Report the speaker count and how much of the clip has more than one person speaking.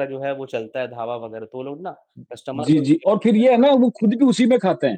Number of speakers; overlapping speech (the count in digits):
2, about 26%